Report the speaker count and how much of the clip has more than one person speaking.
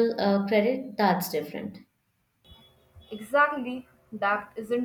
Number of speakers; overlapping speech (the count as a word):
two, no overlap